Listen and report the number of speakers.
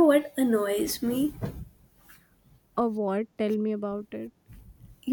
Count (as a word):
two